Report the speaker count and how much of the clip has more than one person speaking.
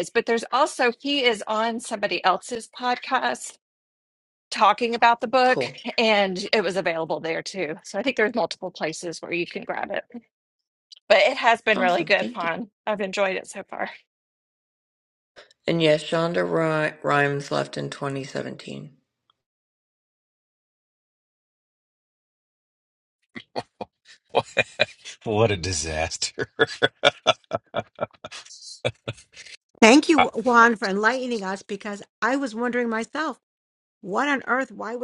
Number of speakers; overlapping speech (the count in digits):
4, about 3%